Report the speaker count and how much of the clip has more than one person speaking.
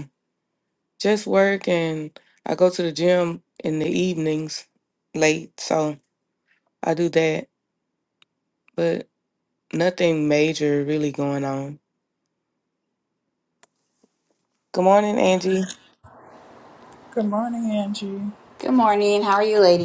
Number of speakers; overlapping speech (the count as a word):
three, no overlap